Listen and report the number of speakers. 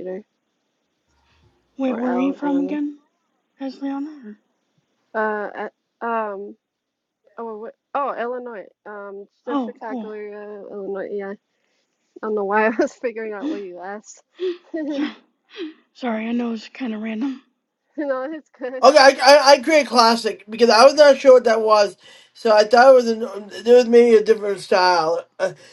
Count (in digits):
3